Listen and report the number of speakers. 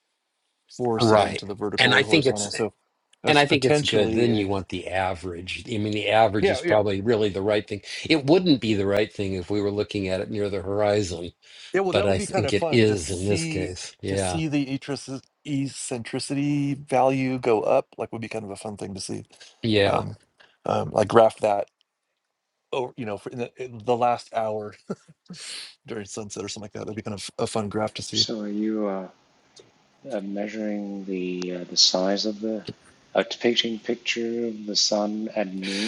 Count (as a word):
three